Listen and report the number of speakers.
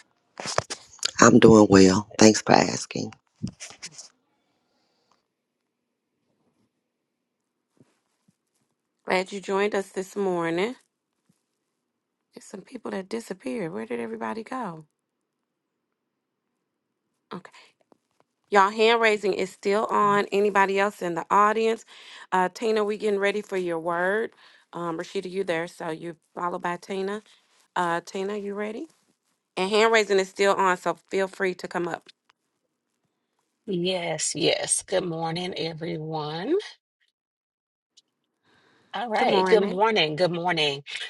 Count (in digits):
3